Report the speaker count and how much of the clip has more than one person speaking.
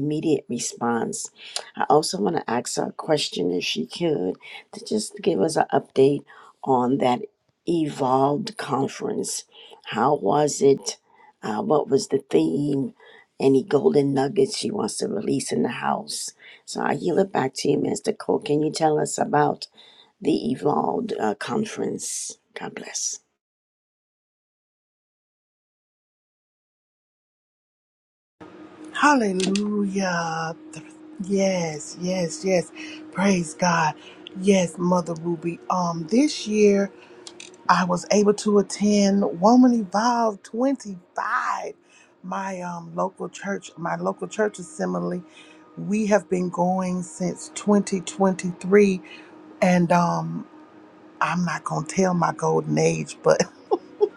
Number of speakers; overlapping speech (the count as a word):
two, no overlap